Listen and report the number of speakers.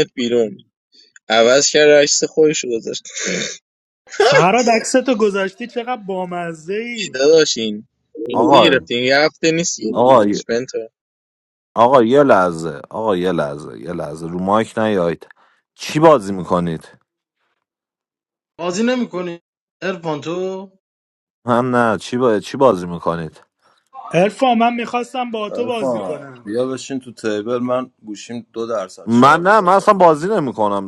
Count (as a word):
five